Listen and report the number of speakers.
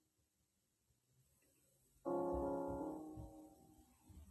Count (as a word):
zero